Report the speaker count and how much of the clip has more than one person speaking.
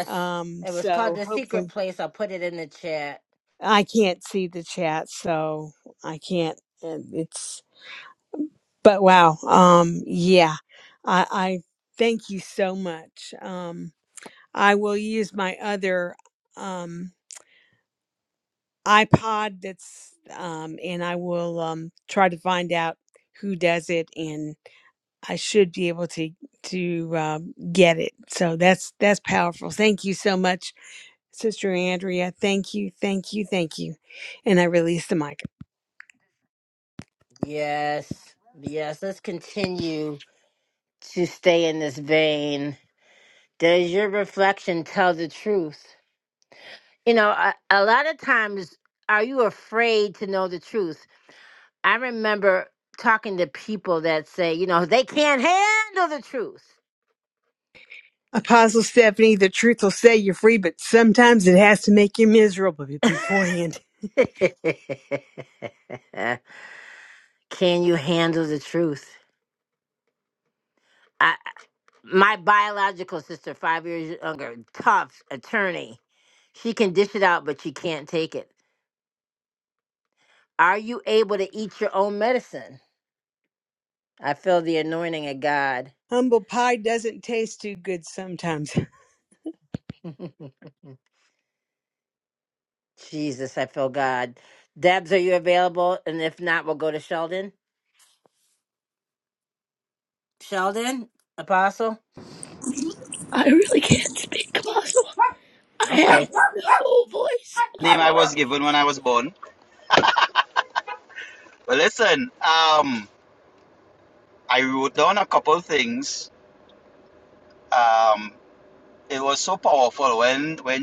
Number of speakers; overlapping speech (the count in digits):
4, about 1%